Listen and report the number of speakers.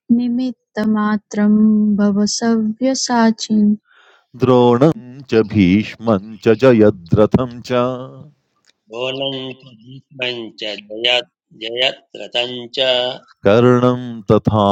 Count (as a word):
three